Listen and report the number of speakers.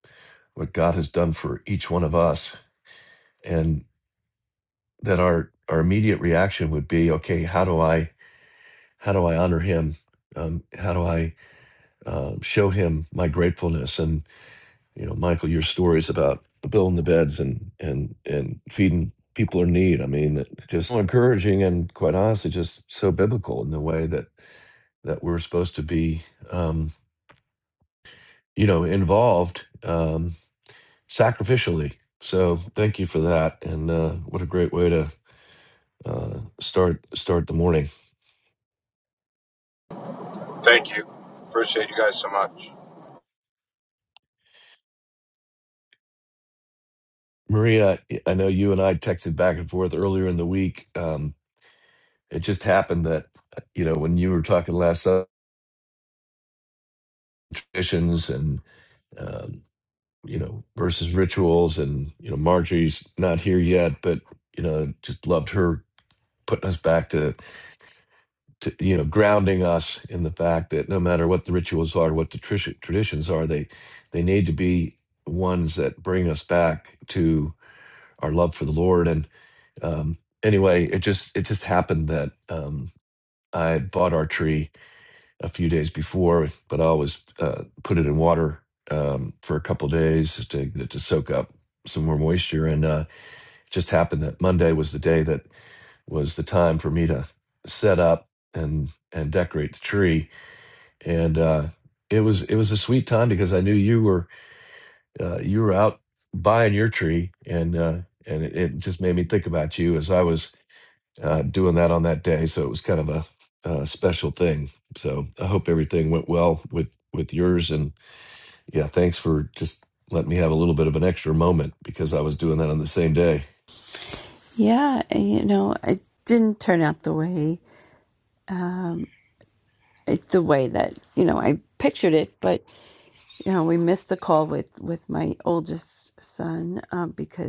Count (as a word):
three